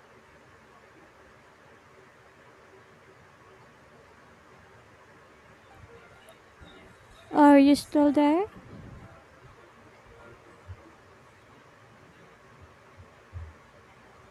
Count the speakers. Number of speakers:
1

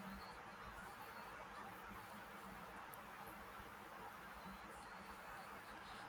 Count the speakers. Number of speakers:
0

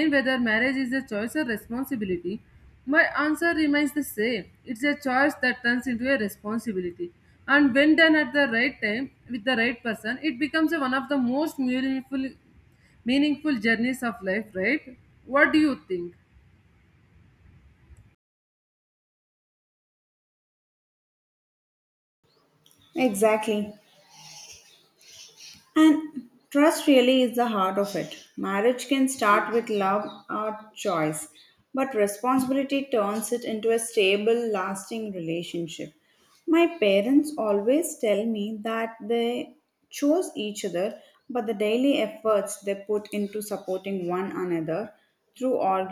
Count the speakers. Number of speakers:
2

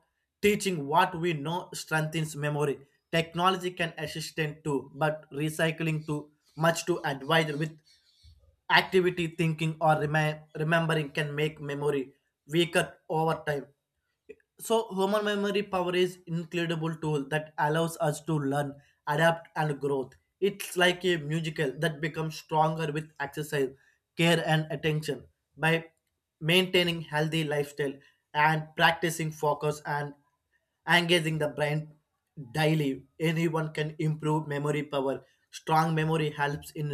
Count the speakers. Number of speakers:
1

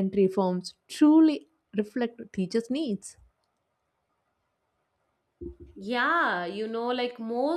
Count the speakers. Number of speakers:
2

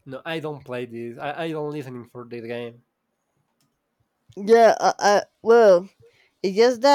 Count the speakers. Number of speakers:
2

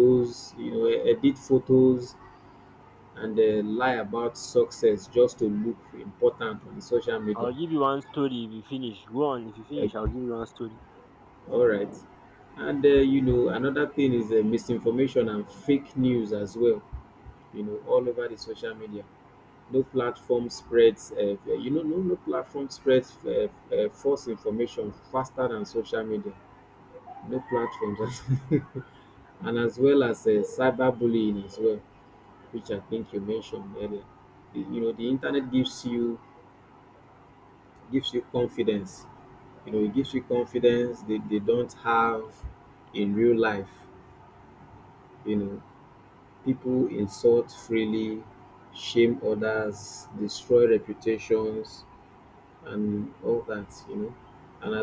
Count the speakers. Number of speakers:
2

